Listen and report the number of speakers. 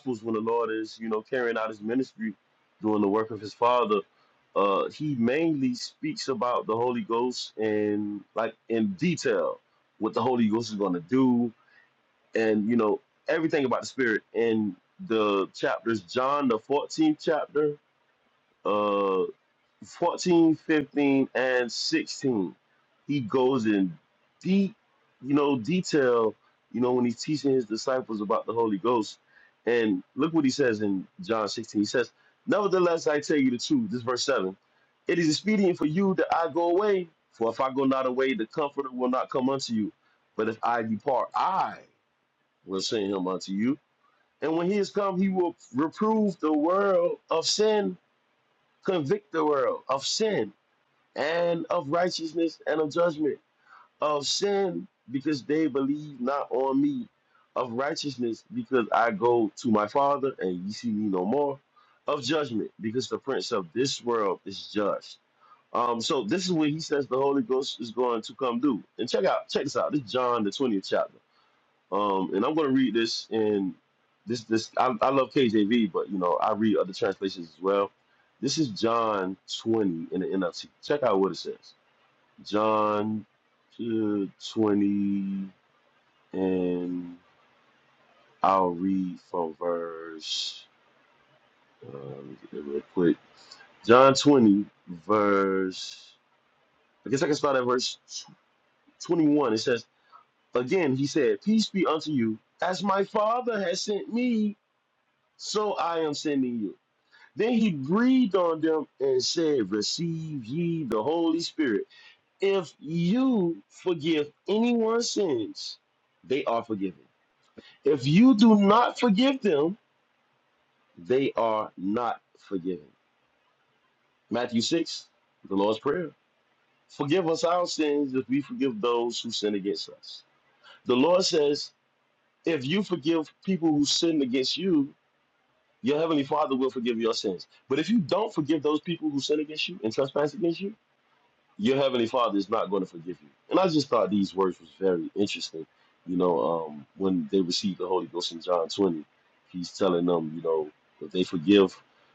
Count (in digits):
1